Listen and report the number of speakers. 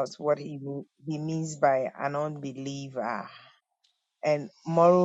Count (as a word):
one